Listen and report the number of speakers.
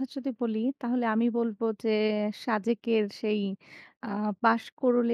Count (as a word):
one